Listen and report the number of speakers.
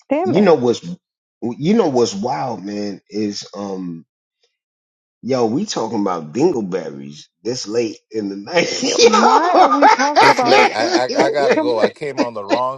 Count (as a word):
three